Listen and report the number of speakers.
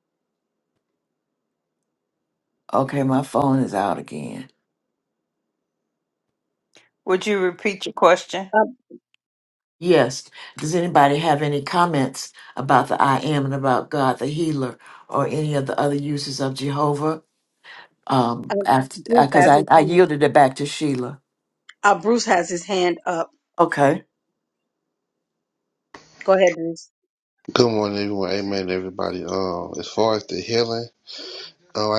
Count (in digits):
4